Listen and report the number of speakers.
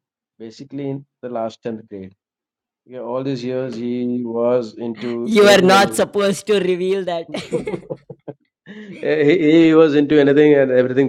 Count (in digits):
2